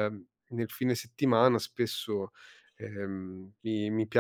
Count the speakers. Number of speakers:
one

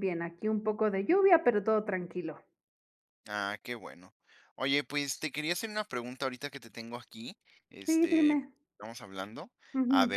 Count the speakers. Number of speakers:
two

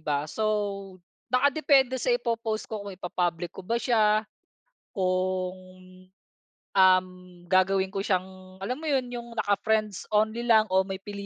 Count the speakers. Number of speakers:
one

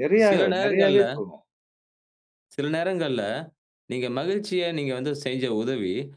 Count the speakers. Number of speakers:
two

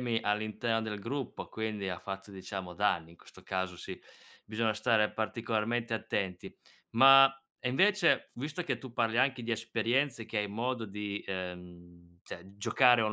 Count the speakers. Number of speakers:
one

